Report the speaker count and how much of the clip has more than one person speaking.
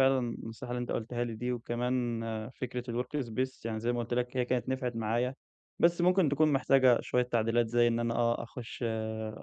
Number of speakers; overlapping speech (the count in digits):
1, no overlap